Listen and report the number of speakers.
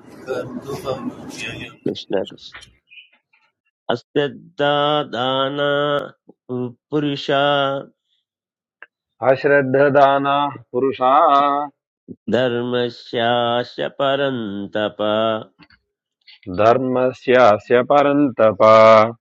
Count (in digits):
3